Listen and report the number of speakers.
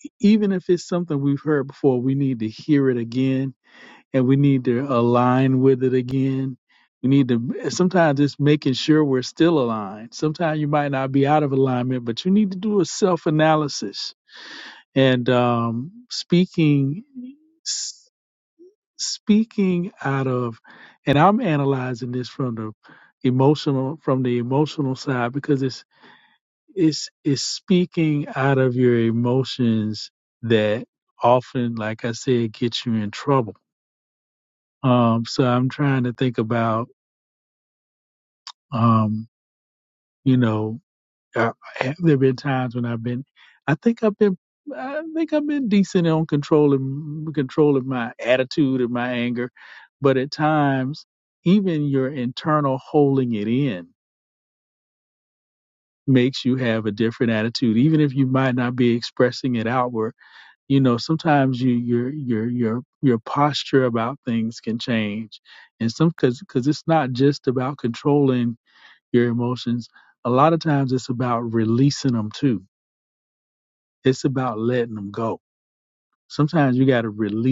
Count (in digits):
1